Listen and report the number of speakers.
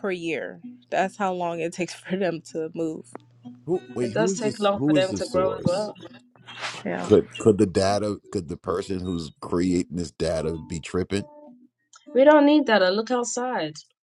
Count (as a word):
three